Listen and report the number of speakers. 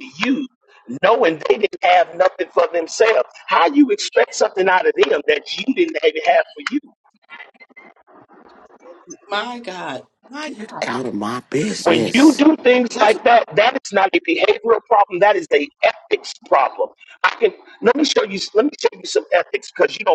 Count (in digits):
3